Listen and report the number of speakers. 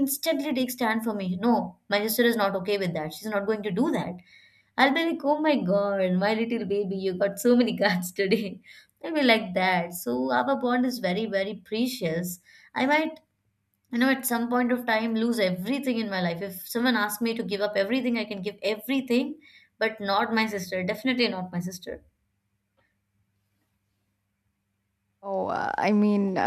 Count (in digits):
2